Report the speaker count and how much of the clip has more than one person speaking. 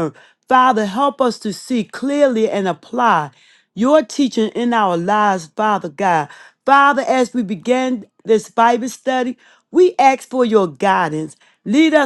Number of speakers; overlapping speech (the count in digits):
1, no overlap